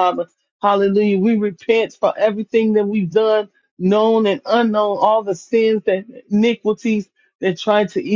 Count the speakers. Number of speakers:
1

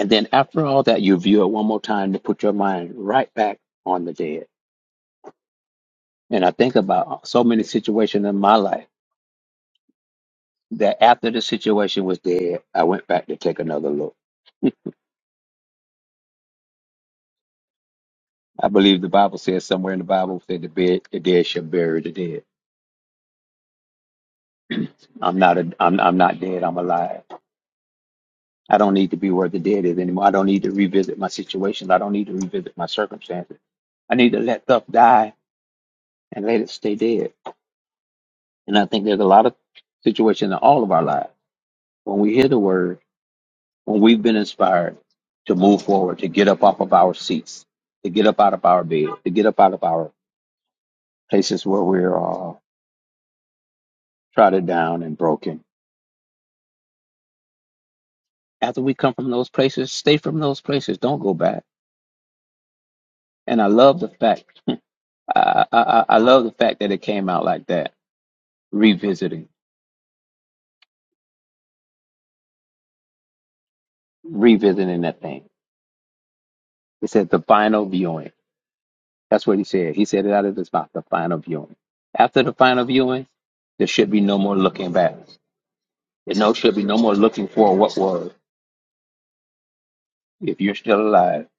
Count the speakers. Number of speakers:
1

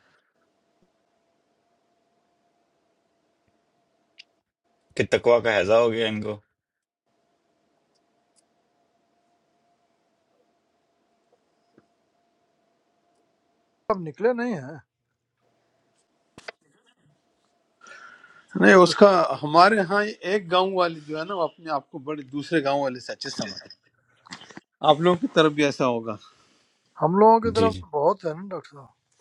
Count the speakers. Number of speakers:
3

